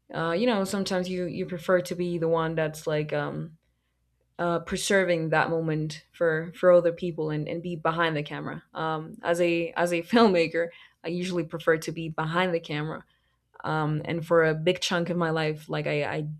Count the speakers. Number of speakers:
1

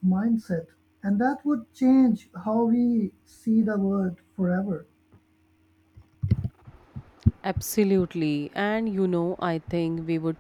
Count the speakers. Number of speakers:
2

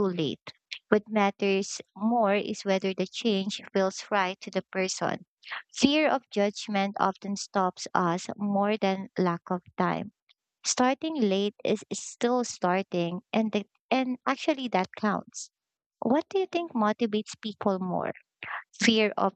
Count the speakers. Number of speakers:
1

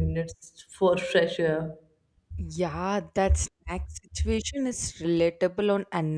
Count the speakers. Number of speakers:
2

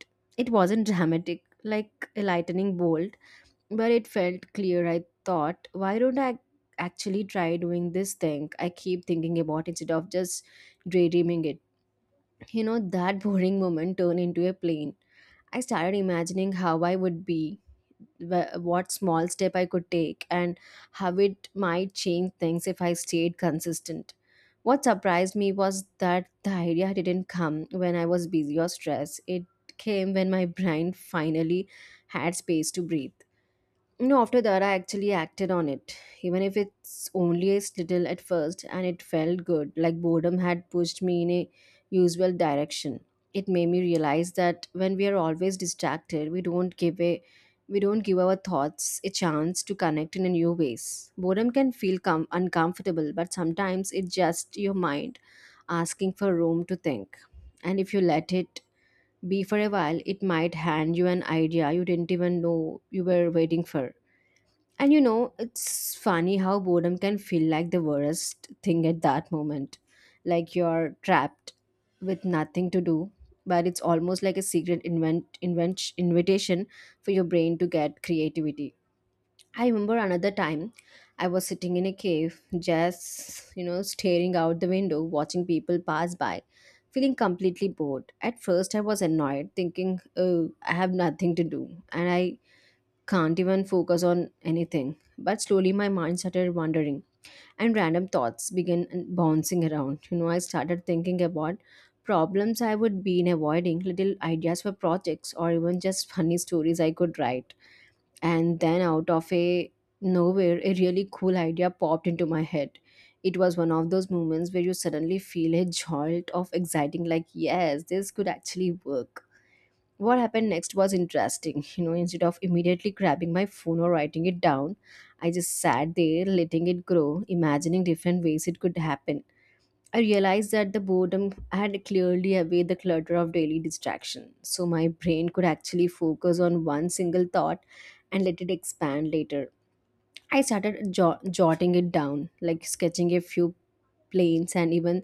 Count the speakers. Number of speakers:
1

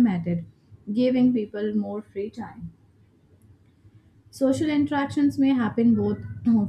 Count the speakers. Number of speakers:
1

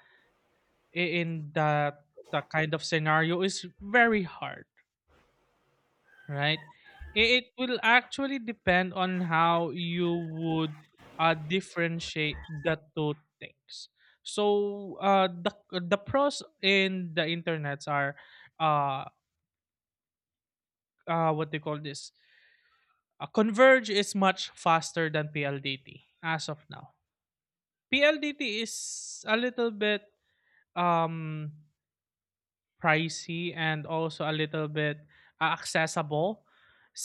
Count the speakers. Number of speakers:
1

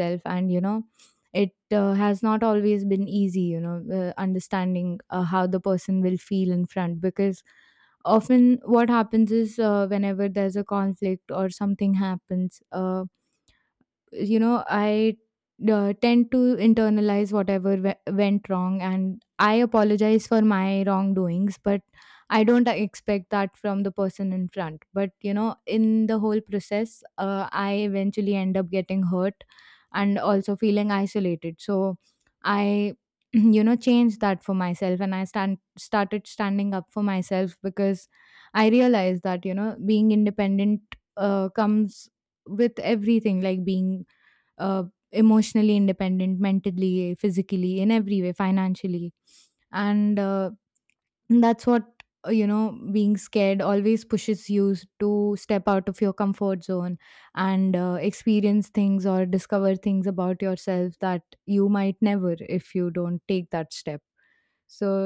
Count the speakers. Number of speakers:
1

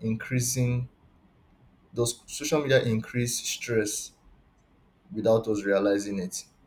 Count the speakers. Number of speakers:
1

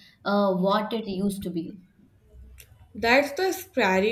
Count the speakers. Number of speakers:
2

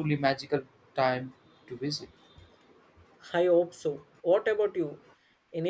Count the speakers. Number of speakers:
2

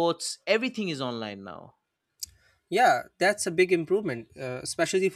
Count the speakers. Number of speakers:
2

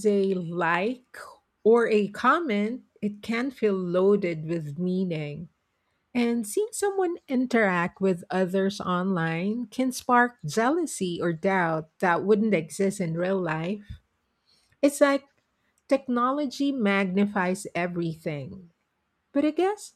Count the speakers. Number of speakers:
1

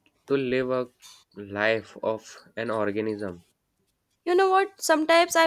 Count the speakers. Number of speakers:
2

